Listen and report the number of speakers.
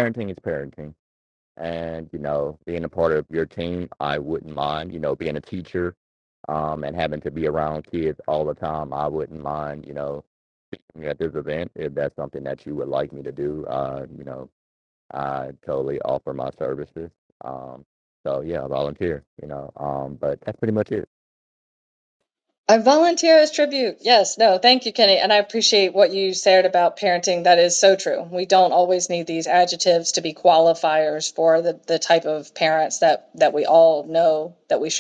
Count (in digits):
2